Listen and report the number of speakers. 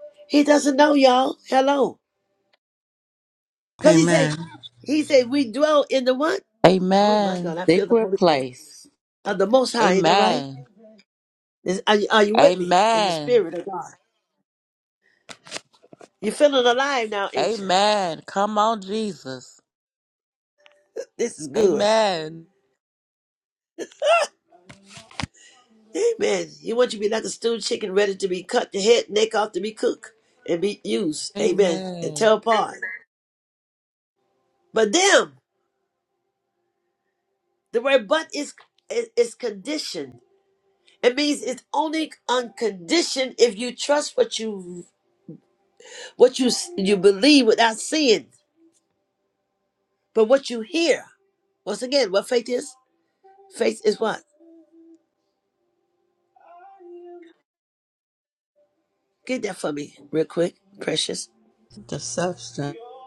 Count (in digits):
3